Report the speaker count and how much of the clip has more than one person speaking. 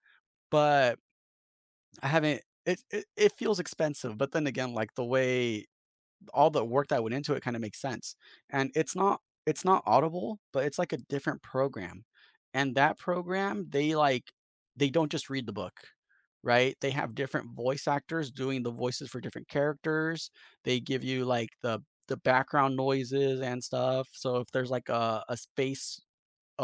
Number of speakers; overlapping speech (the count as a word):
one, no overlap